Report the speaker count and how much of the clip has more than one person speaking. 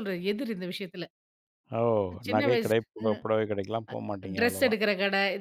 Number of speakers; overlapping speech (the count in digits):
2, about 18%